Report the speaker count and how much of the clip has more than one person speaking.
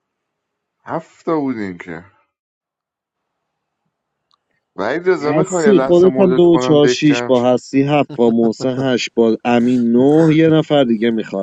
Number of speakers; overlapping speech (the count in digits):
2, about 20%